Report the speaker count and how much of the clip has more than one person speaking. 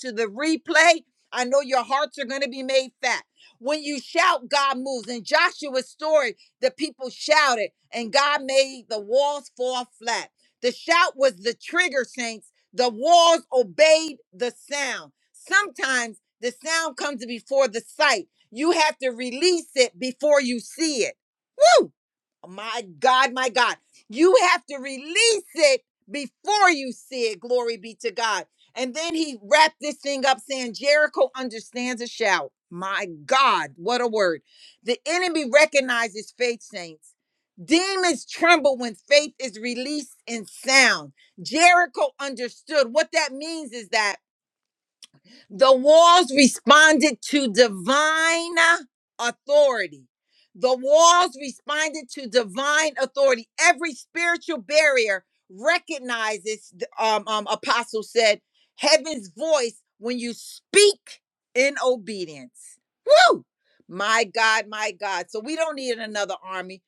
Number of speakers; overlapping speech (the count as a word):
one, no overlap